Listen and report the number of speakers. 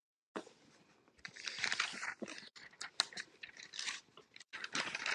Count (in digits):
0